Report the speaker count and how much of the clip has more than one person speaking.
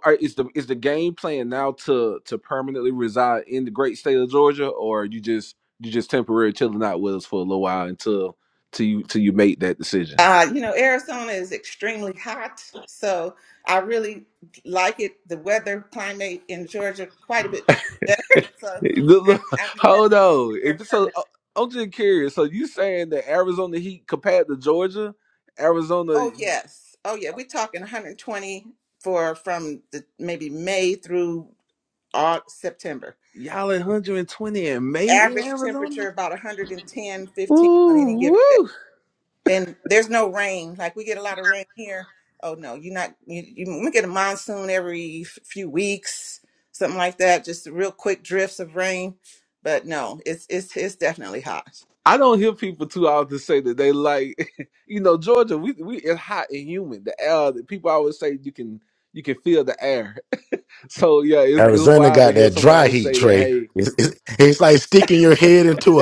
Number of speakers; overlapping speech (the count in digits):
3, about 8%